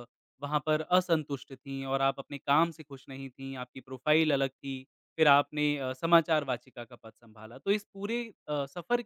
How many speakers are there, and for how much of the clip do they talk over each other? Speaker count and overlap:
1, no overlap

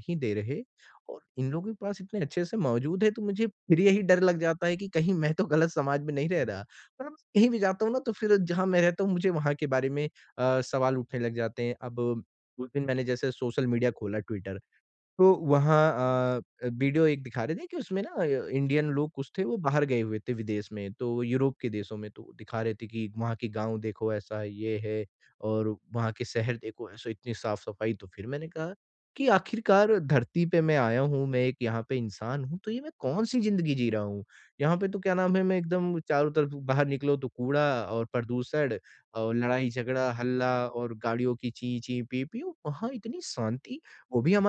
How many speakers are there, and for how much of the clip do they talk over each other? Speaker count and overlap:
1, no overlap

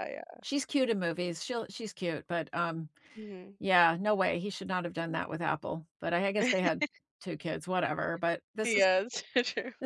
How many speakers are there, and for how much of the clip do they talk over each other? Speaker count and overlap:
2, about 2%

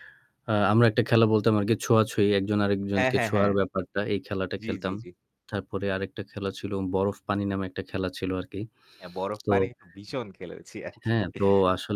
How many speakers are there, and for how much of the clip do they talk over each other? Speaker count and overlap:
2, about 9%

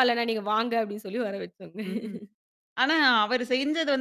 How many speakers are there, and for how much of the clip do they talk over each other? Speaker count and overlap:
2, no overlap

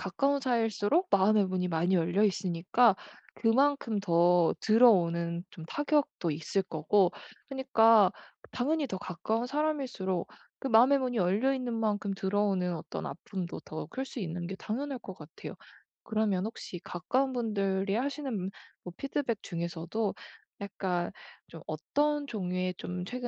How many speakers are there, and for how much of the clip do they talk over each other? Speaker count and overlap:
1, no overlap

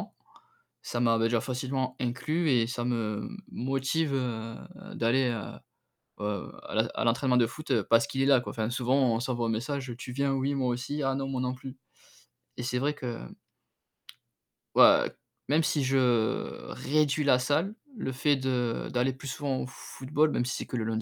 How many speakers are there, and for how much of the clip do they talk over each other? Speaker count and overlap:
1, no overlap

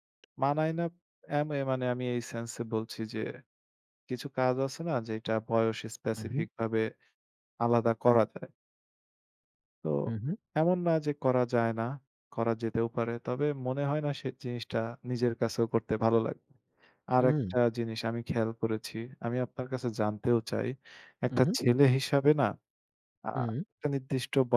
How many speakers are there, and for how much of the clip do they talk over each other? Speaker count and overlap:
2, about 3%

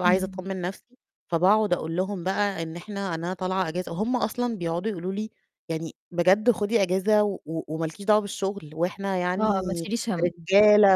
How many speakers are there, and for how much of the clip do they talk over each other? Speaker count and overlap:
2, about 7%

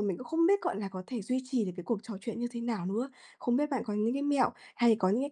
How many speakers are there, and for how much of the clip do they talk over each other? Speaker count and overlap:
1, no overlap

